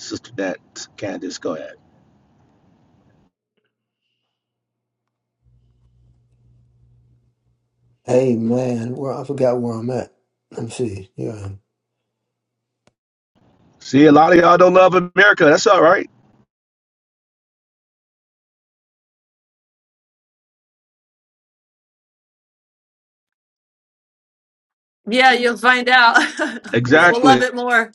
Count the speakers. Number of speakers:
three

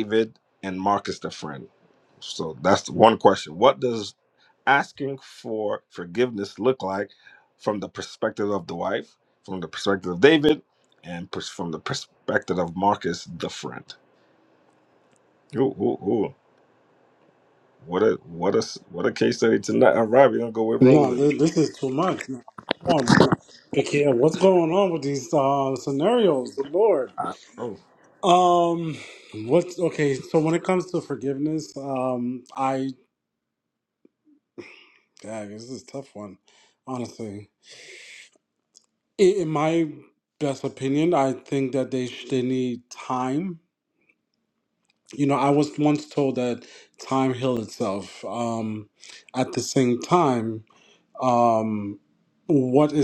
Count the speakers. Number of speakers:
two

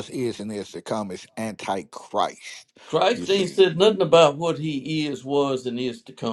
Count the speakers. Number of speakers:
two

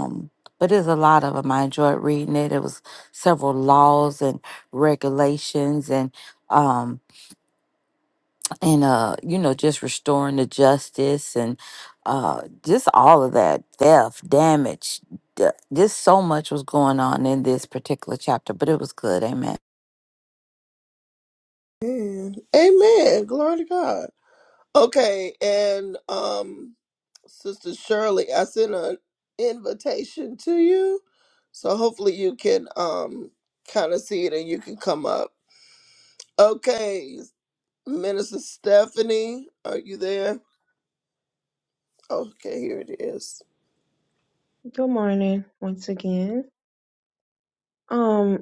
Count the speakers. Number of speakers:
three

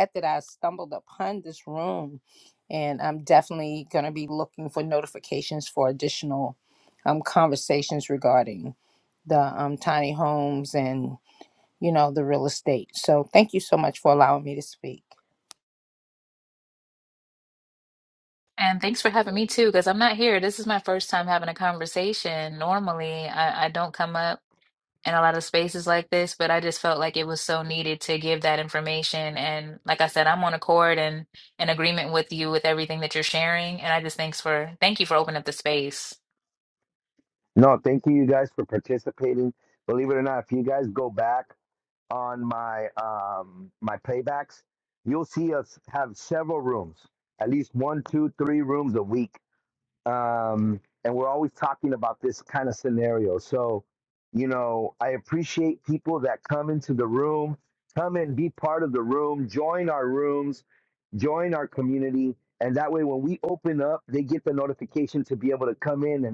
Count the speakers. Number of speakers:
three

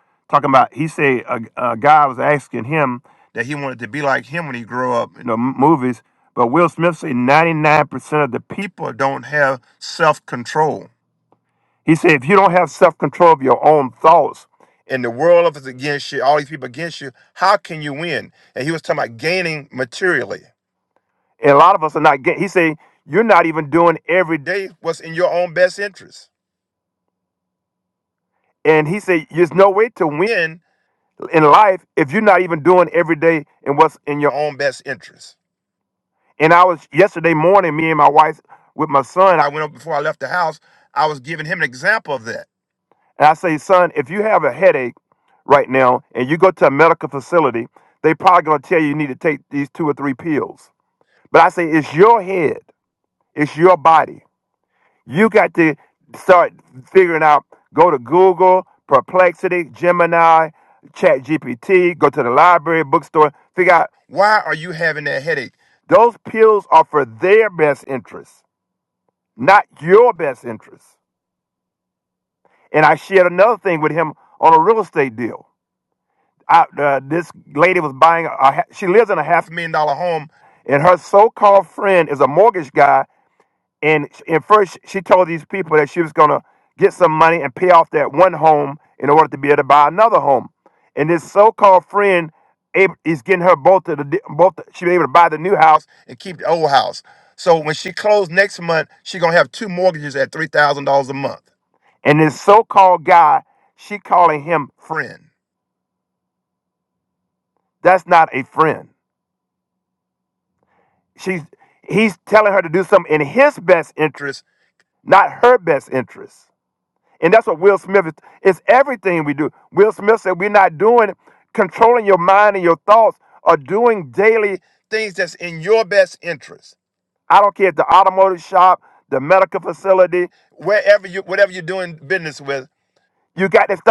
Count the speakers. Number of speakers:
one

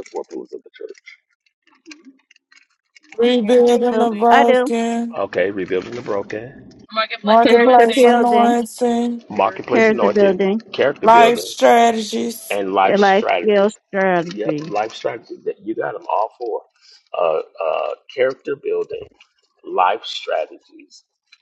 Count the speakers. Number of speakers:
three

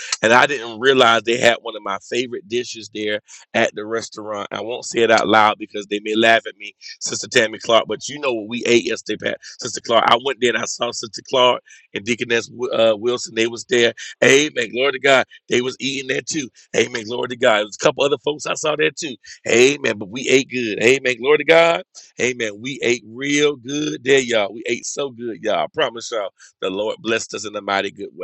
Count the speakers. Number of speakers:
one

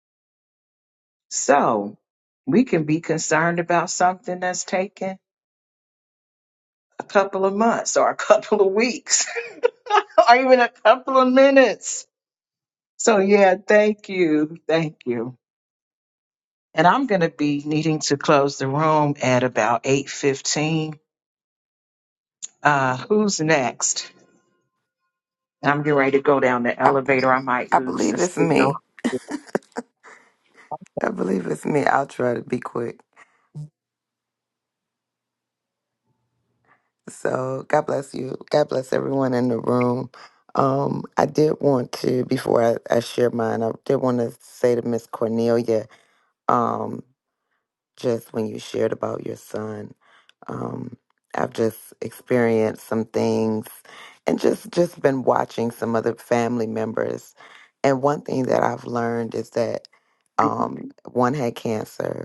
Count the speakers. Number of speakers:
two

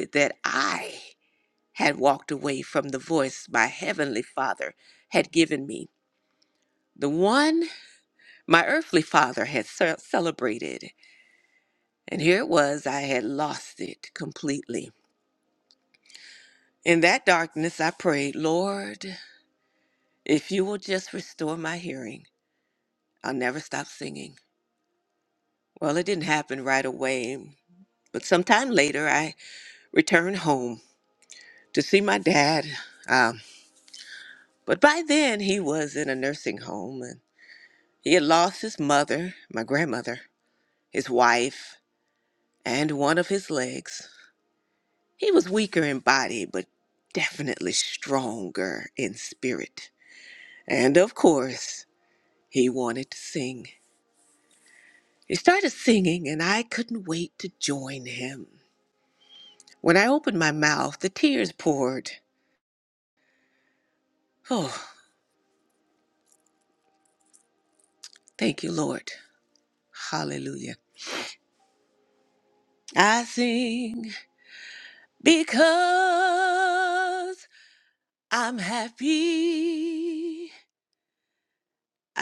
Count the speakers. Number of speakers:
one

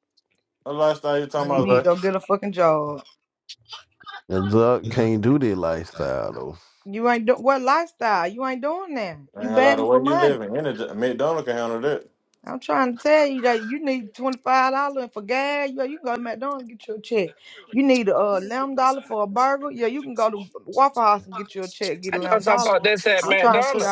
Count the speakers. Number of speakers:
four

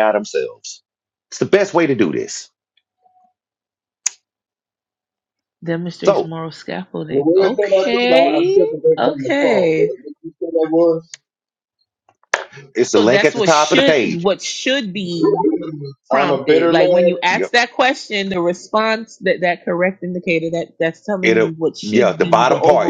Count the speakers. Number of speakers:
three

